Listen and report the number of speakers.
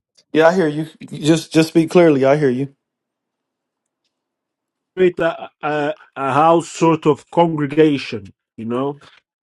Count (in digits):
2